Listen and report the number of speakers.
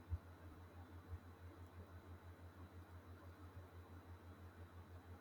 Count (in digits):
0